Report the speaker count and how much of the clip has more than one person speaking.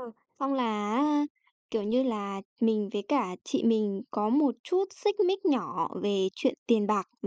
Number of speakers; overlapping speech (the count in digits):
1, no overlap